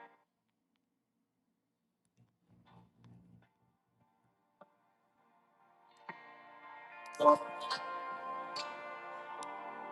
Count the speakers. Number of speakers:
0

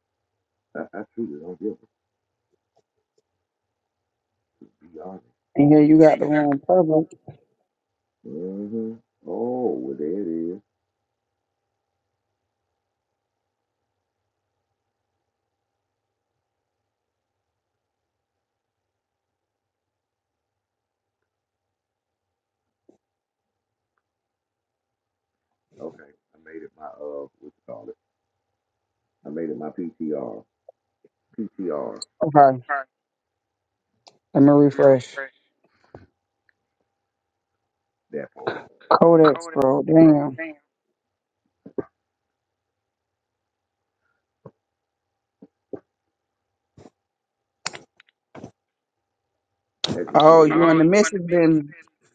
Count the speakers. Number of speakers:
2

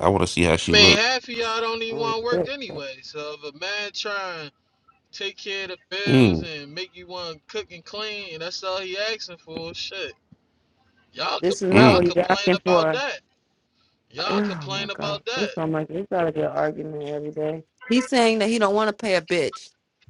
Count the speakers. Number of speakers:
3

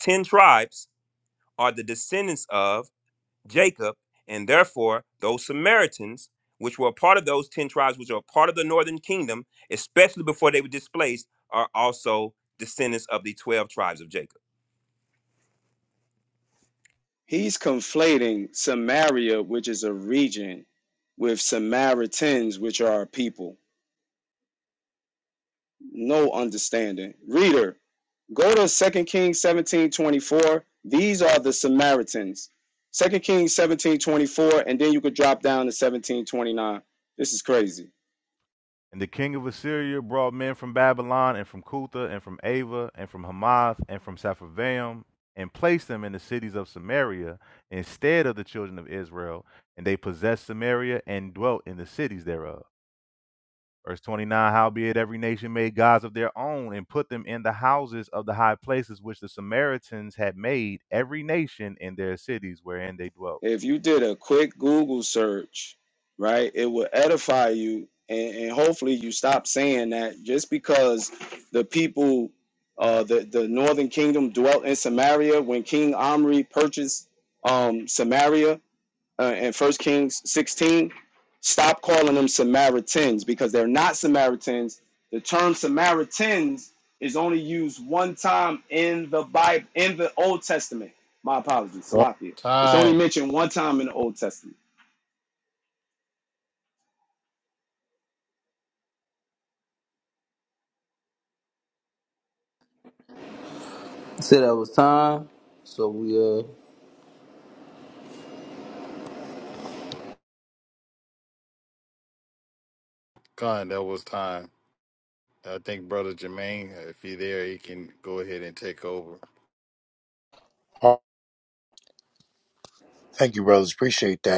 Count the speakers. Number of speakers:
6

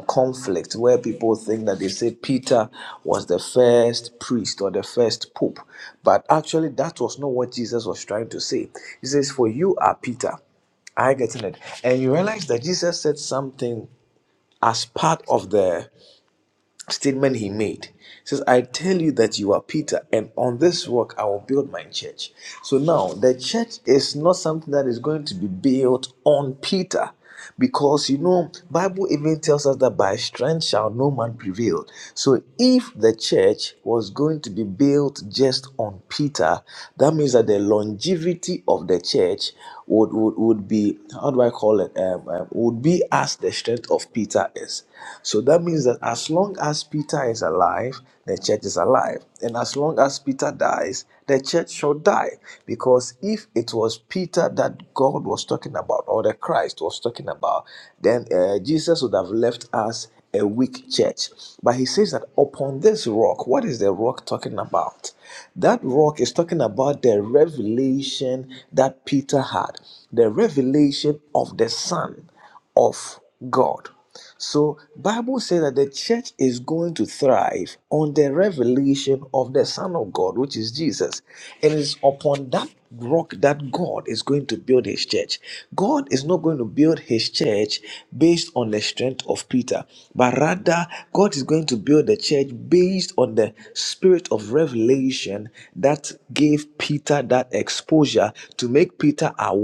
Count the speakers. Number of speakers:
1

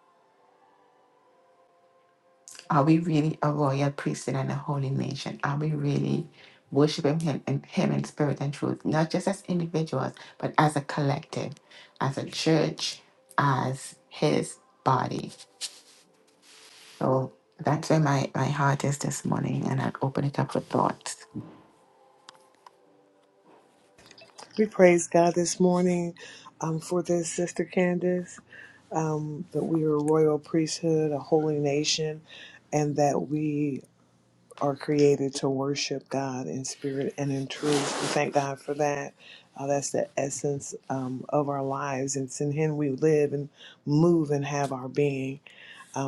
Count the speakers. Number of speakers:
2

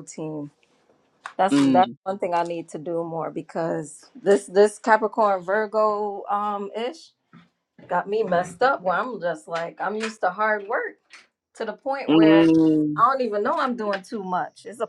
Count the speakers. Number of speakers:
2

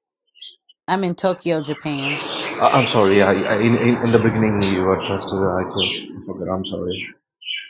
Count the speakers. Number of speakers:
2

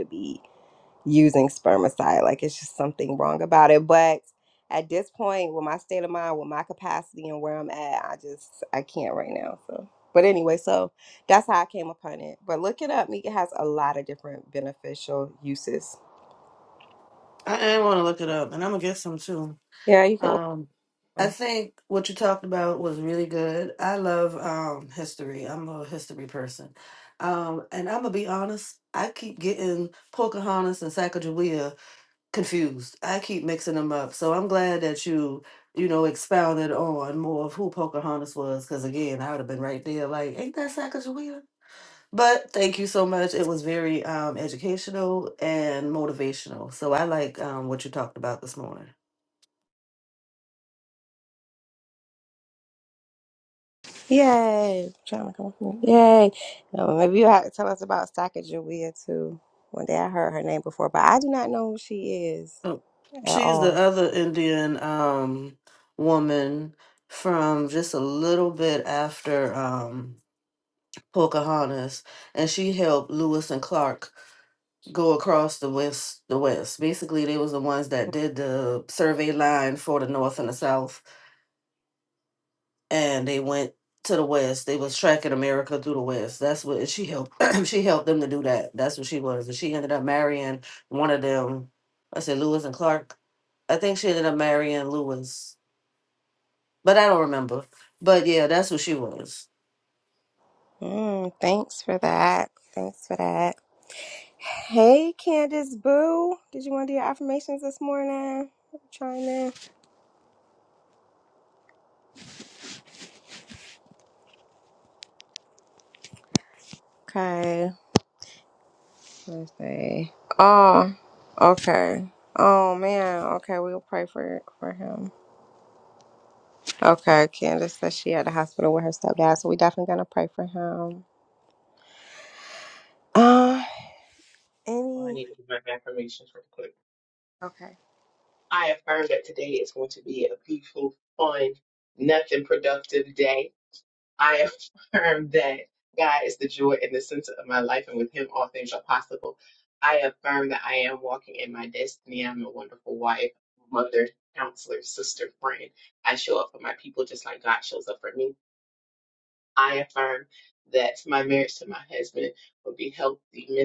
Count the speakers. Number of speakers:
3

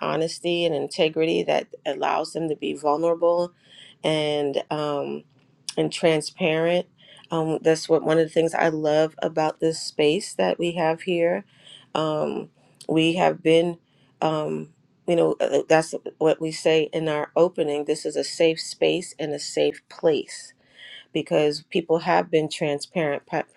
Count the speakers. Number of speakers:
1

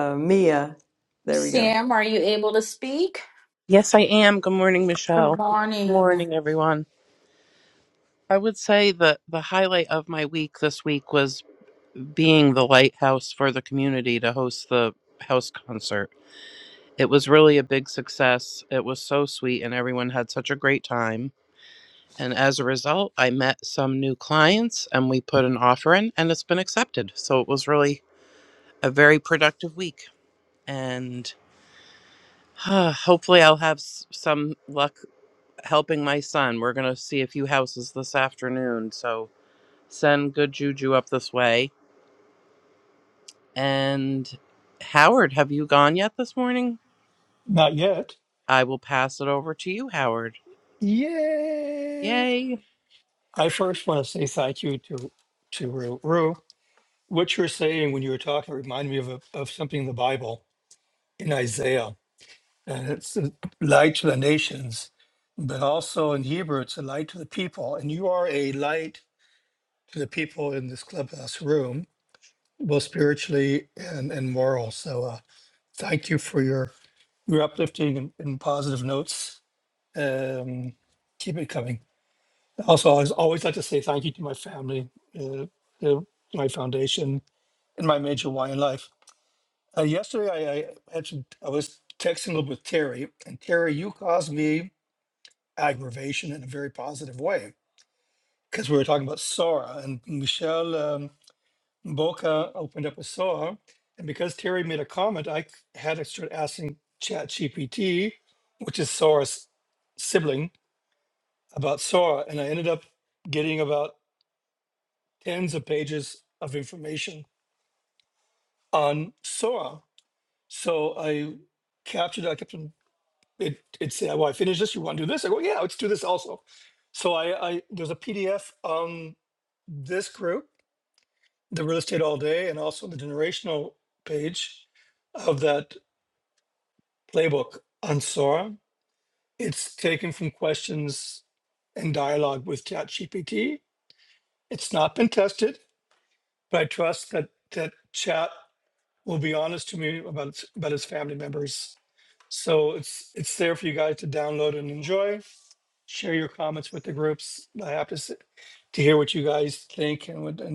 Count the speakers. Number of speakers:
4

